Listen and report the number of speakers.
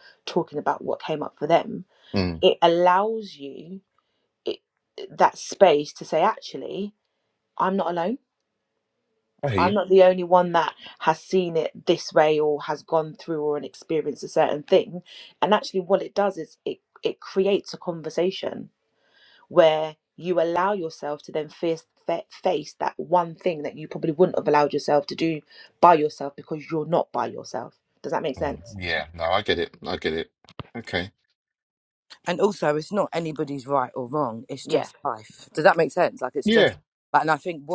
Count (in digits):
3